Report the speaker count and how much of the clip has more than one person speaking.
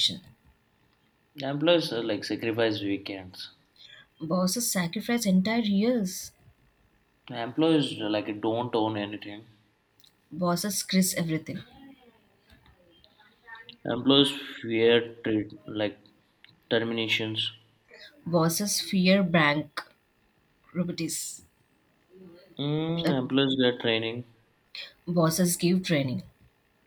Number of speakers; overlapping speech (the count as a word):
two, about 1%